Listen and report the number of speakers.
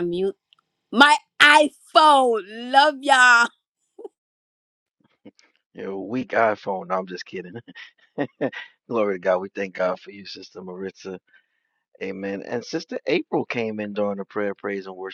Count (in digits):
2